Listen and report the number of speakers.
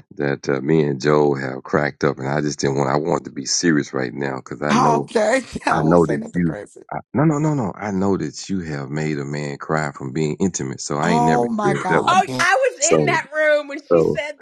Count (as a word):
three